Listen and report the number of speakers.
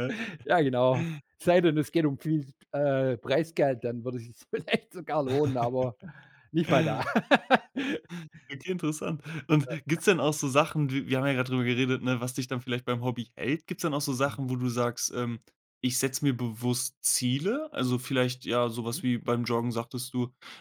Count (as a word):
two